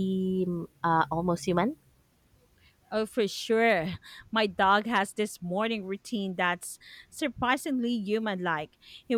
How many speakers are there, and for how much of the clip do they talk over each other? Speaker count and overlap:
2, no overlap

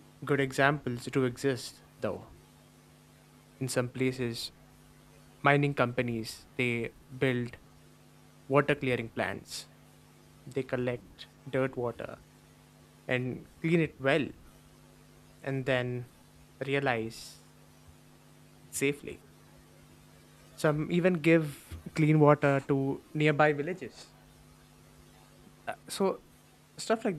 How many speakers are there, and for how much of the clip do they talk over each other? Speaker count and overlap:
1, no overlap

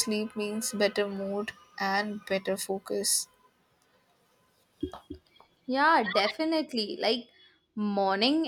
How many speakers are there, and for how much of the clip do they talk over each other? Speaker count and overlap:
2, no overlap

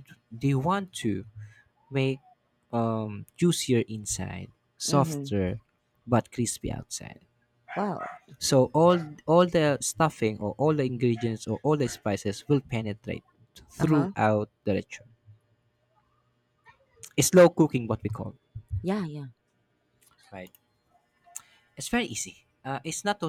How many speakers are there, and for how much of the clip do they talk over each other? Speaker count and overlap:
2, about 3%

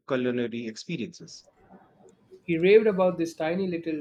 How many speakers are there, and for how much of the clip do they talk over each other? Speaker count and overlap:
2, no overlap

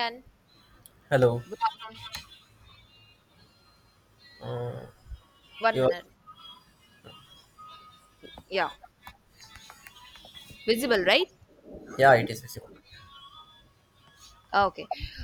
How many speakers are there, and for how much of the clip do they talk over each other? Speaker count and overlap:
2, about 2%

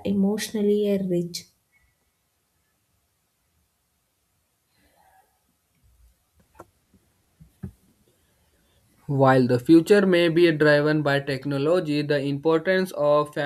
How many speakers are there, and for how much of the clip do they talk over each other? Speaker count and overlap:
2, no overlap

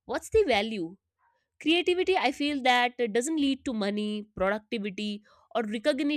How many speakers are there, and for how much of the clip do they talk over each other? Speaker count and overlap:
1, no overlap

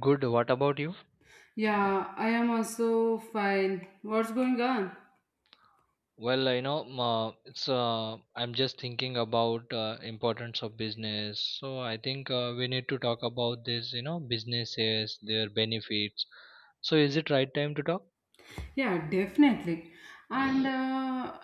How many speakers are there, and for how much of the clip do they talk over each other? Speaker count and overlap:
2, no overlap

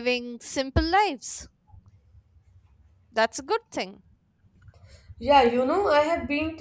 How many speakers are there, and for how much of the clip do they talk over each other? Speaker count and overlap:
2, no overlap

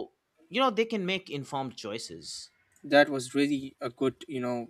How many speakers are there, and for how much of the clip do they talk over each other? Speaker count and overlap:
2, no overlap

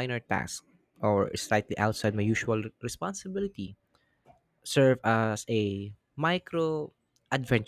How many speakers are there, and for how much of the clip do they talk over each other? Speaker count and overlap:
1, no overlap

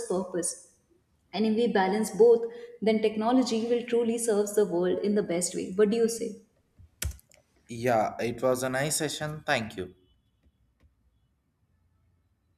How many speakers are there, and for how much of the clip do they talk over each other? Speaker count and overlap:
2, no overlap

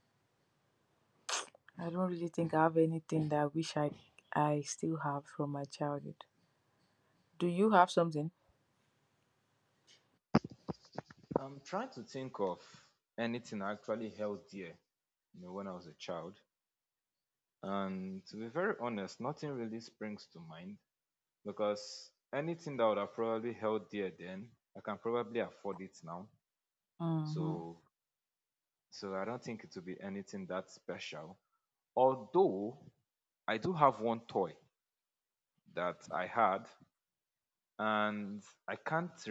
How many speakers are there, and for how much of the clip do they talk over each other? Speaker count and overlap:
2, about 1%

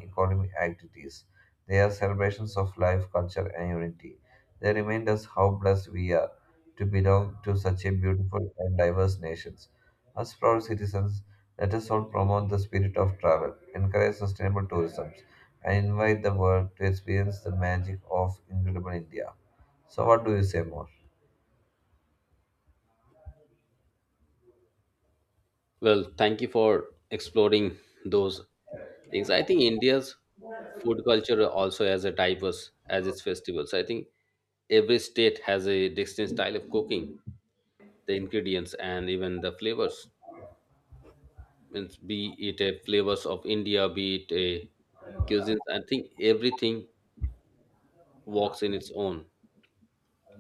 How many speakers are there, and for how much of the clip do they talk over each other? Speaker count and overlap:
2, no overlap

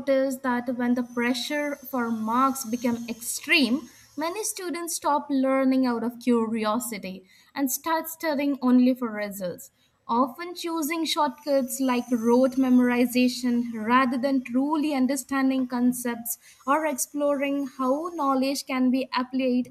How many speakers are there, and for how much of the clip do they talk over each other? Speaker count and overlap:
1, no overlap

